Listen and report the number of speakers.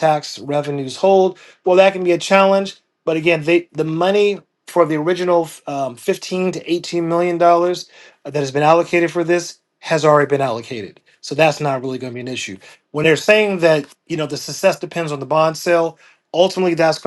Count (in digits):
1